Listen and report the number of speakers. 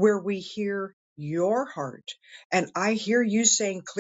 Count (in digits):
1